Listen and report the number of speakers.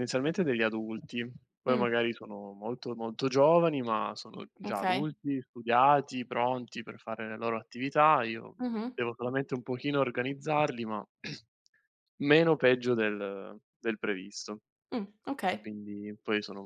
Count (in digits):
2